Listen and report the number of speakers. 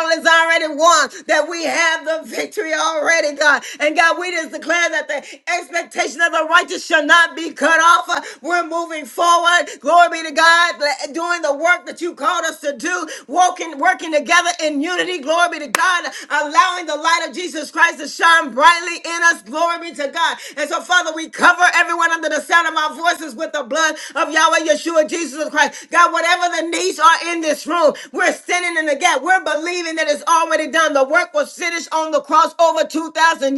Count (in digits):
1